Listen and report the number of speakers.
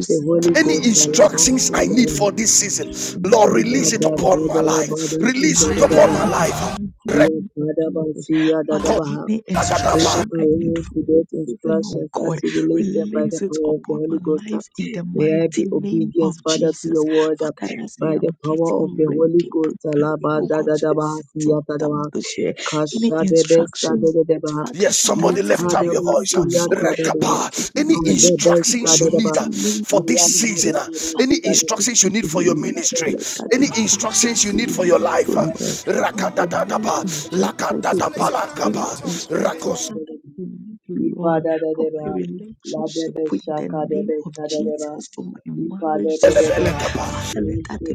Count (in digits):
3